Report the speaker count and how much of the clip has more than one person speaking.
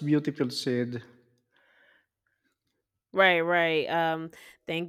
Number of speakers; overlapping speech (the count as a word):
two, no overlap